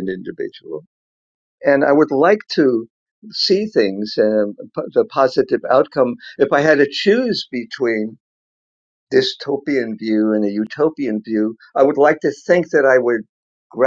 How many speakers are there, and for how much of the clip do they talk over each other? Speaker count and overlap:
1, no overlap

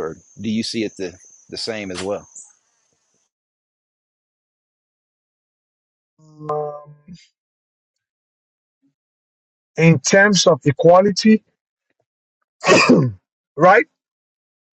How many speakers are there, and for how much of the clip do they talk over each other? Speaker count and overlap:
2, no overlap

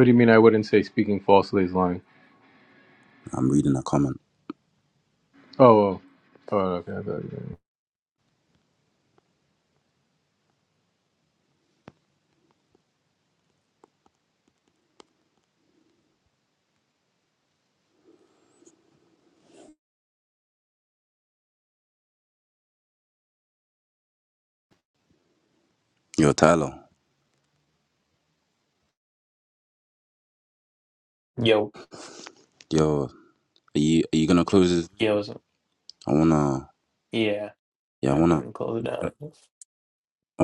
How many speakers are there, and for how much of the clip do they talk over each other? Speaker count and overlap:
3, about 1%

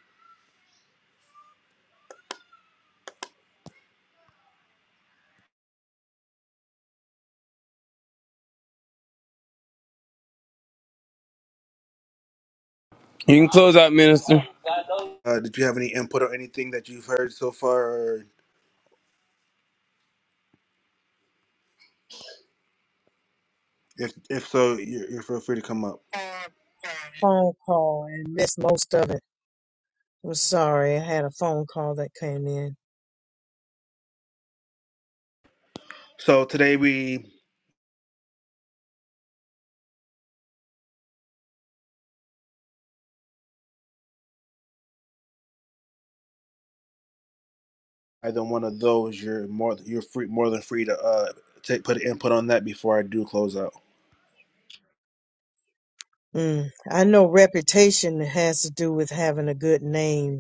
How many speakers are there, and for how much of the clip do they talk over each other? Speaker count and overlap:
3, no overlap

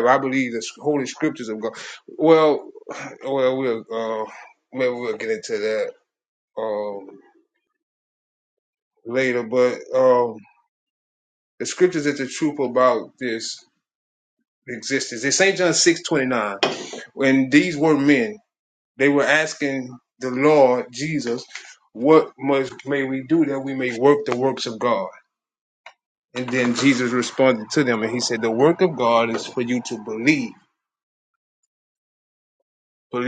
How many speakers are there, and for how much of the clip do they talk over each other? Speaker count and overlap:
1, no overlap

